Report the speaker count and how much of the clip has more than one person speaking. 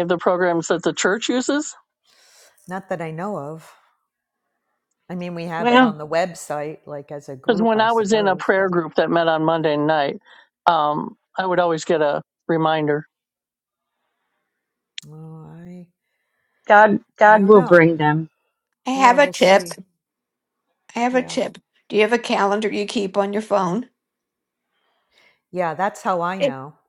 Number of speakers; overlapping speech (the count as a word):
four, about 12%